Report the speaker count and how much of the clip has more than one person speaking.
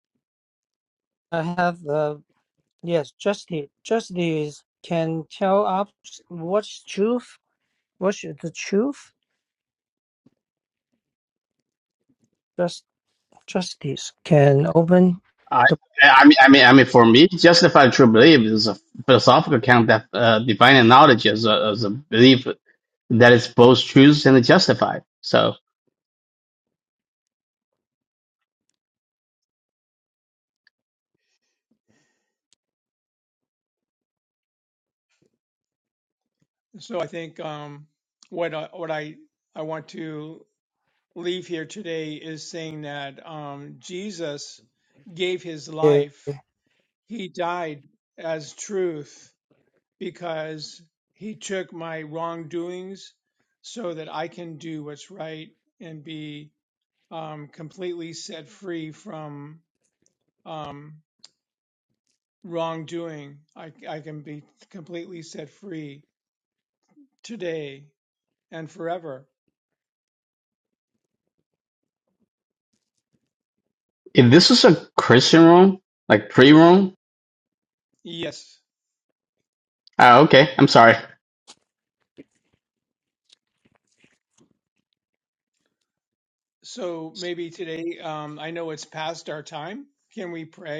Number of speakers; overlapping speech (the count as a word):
three, under 1%